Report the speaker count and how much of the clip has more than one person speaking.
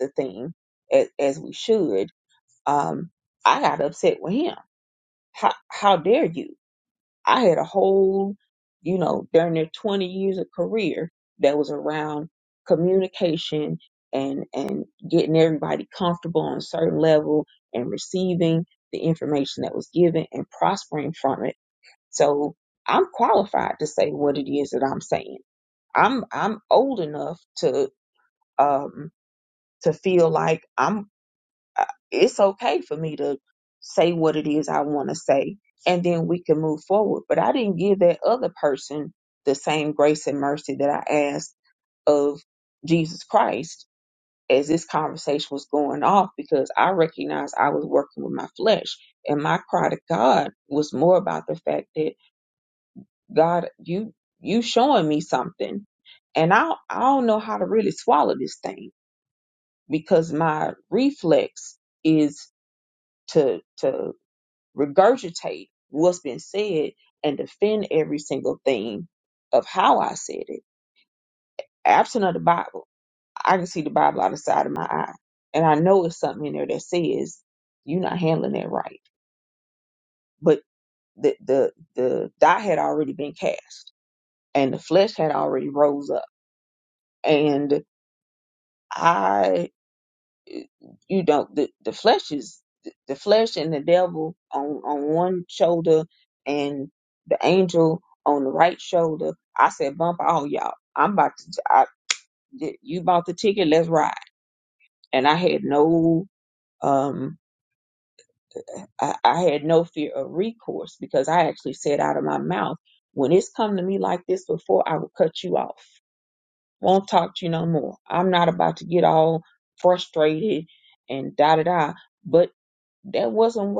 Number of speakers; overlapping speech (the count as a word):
one, no overlap